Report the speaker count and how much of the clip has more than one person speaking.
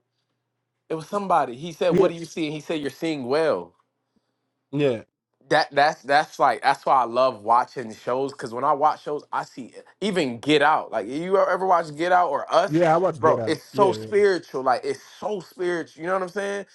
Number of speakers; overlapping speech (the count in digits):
2, about 7%